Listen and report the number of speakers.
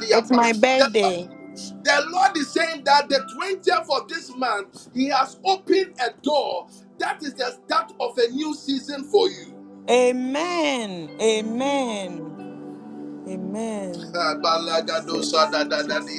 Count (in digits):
2